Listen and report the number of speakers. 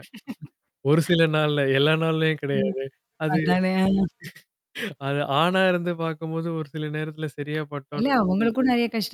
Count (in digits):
2